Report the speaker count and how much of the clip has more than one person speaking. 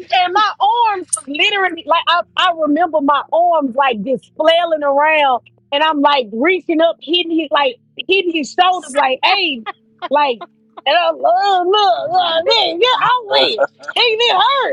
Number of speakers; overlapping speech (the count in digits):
1, no overlap